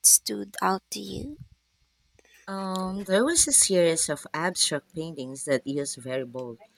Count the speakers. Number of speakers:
2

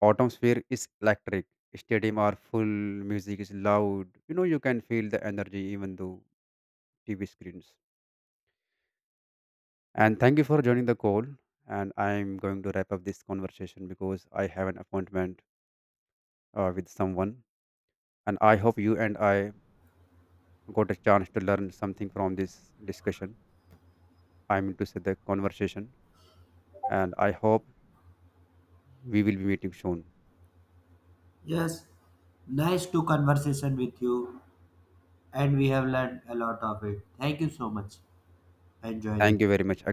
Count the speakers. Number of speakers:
2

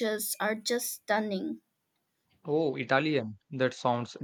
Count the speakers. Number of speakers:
2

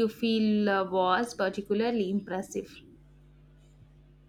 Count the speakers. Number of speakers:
1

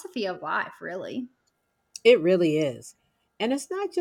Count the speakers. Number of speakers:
2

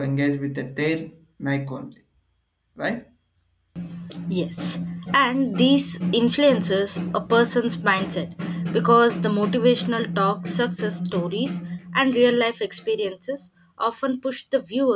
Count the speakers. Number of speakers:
2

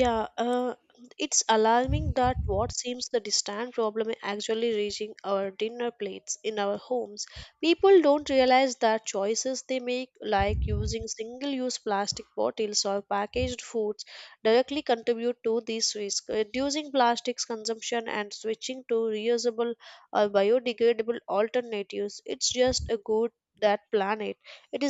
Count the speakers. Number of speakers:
1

